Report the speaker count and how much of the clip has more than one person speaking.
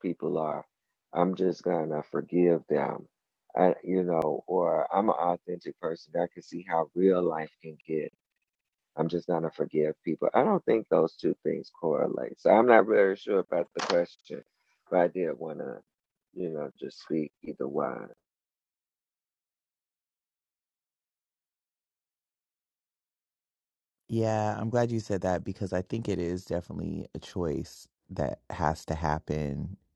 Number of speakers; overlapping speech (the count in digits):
2, no overlap